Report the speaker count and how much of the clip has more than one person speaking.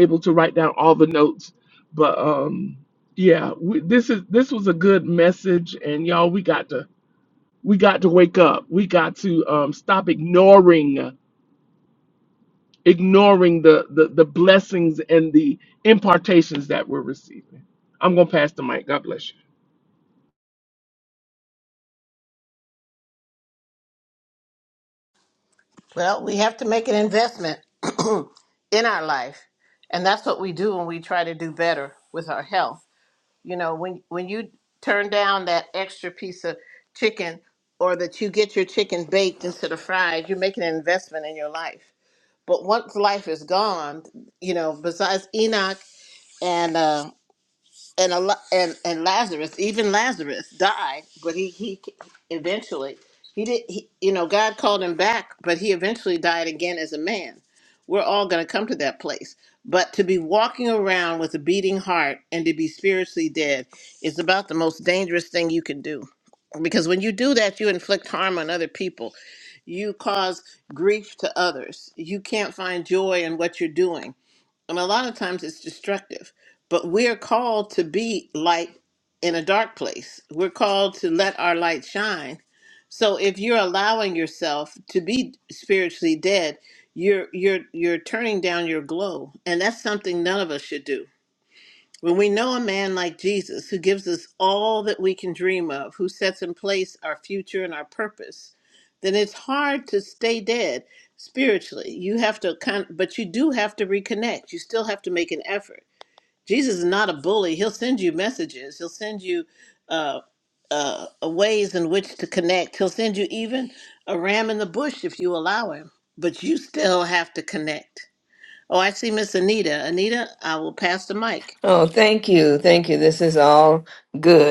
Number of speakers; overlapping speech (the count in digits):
3, no overlap